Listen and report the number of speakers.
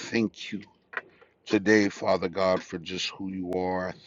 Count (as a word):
one